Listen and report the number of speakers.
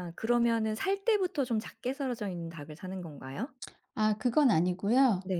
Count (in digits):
2